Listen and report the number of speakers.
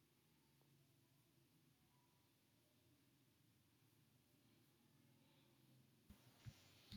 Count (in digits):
0